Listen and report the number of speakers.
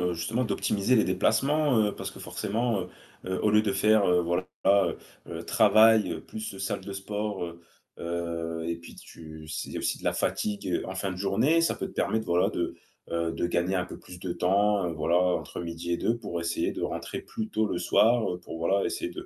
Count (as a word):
one